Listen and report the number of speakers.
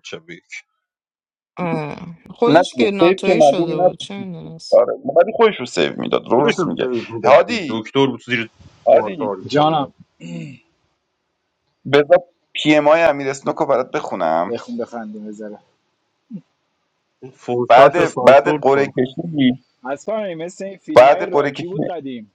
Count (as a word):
four